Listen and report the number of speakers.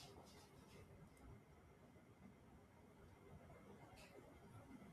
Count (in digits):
0